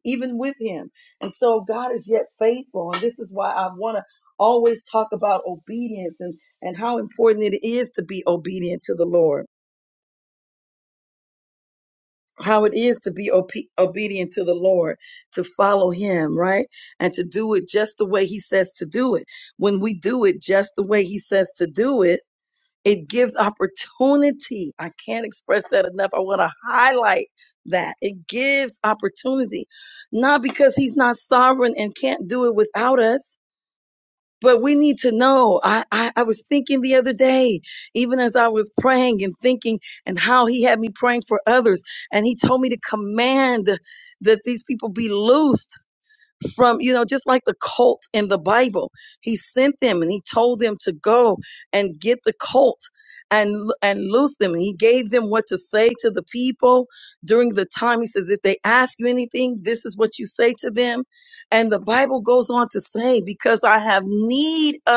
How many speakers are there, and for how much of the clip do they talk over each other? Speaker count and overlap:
one, no overlap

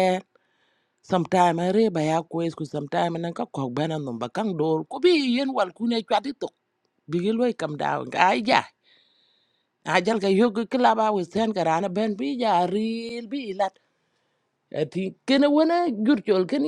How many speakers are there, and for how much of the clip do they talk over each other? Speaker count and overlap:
one, no overlap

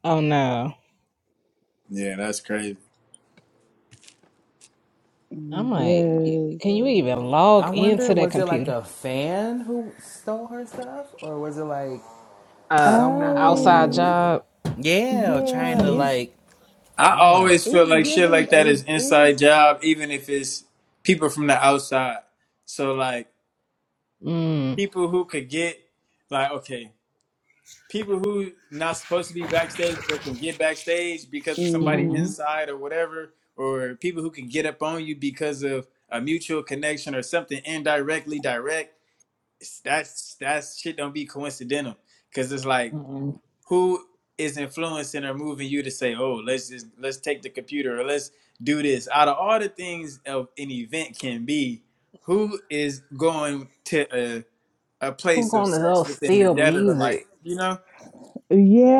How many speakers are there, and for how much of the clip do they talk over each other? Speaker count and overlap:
four, about 15%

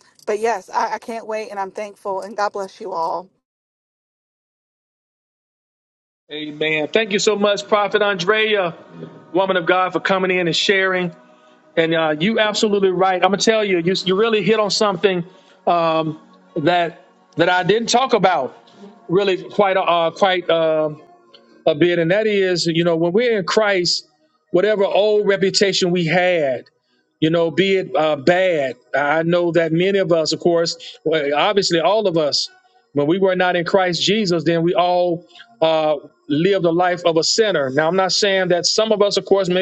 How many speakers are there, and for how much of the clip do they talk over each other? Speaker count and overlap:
two, no overlap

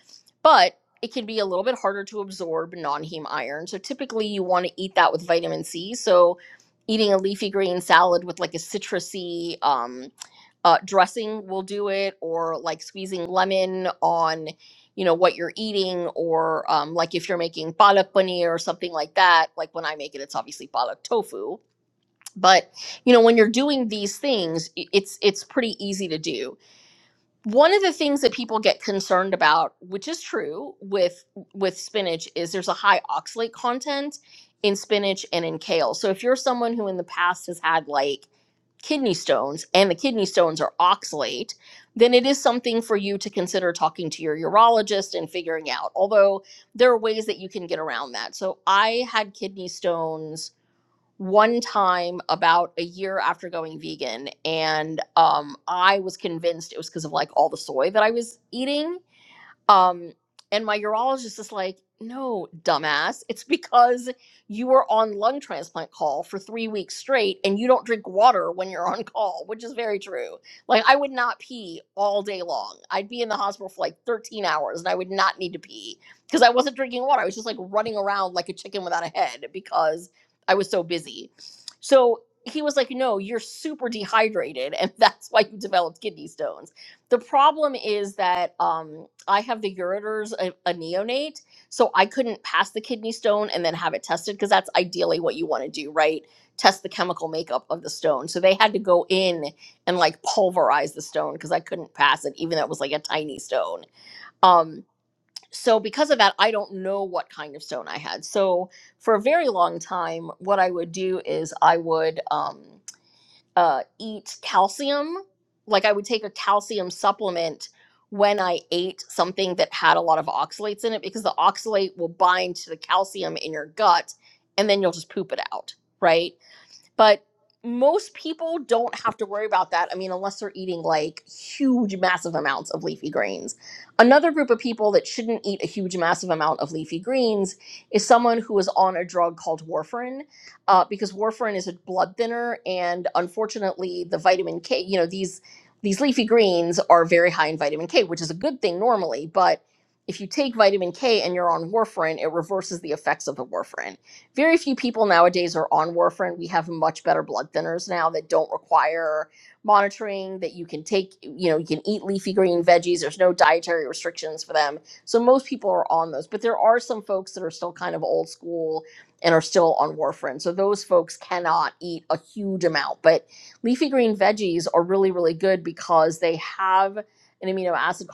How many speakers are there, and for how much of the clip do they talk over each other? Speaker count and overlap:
one, no overlap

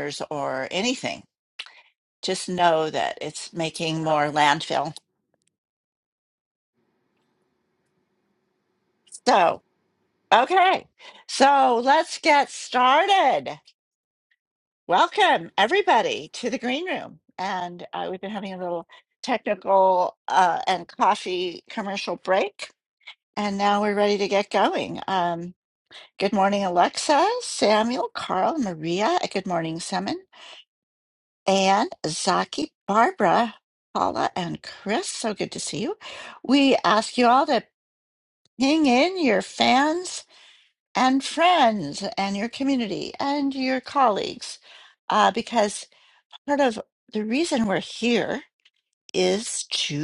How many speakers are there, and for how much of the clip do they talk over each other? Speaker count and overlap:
one, no overlap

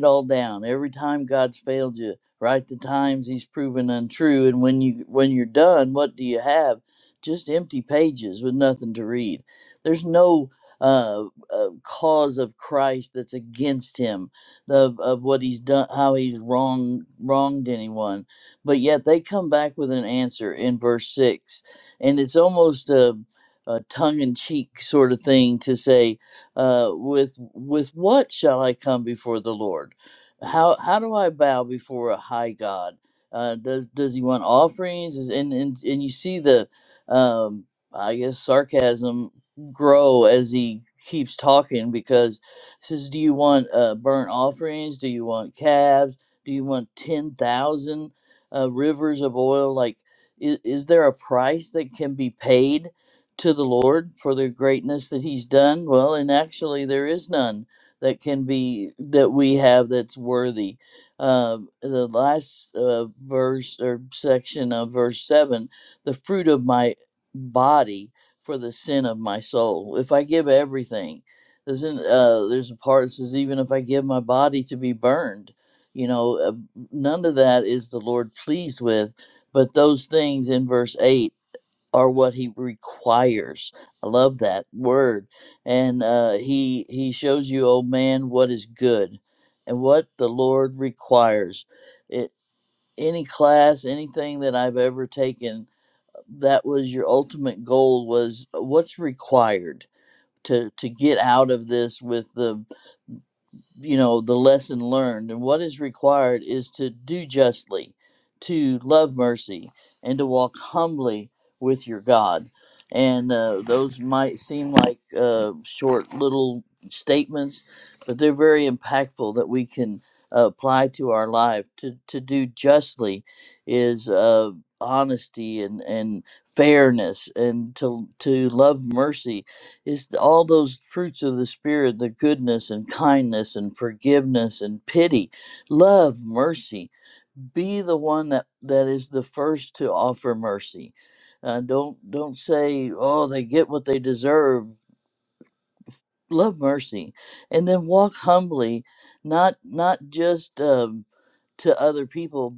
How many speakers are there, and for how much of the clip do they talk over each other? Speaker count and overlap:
one, no overlap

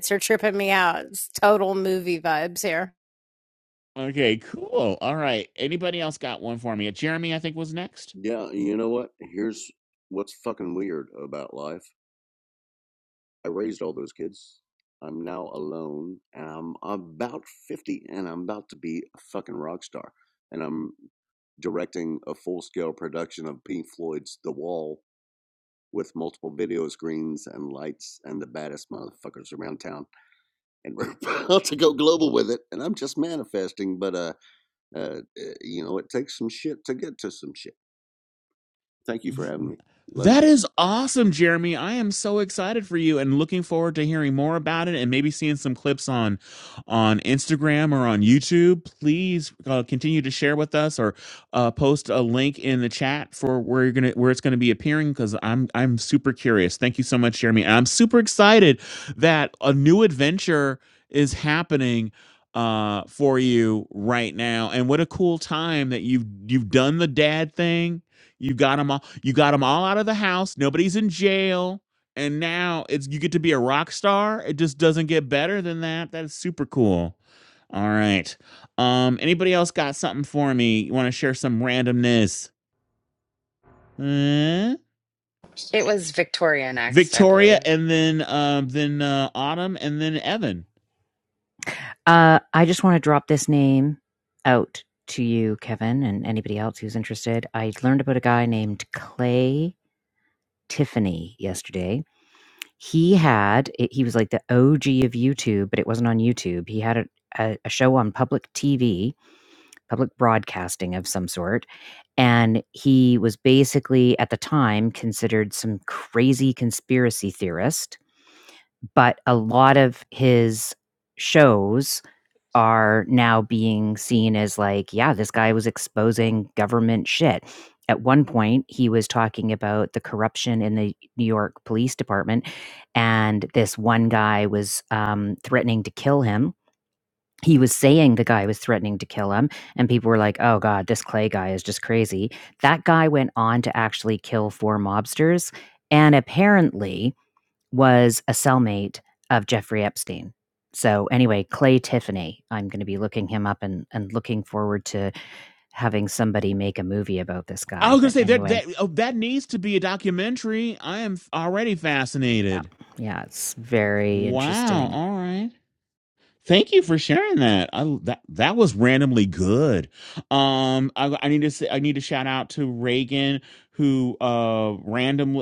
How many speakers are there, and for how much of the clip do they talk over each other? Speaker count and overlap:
five, about 2%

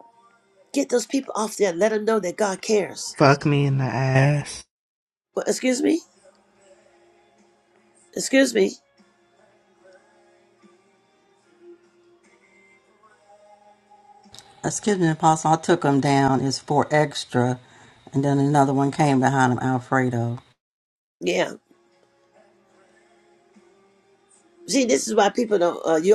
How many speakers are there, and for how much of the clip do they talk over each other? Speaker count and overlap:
three, no overlap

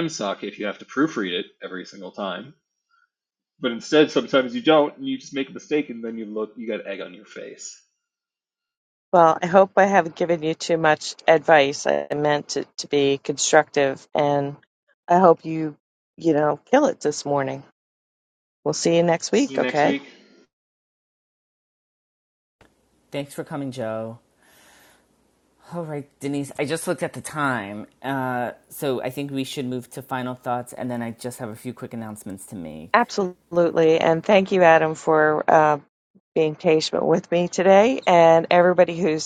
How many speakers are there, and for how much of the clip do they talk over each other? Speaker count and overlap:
three, about 1%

